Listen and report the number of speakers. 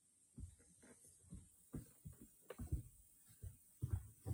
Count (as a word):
zero